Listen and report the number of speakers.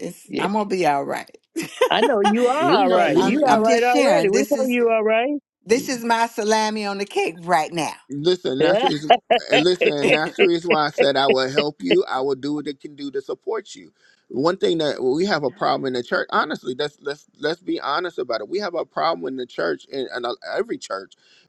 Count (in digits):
3